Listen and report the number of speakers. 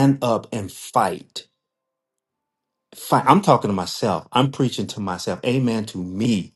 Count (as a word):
one